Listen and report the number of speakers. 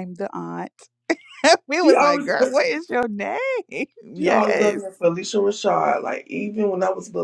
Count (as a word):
two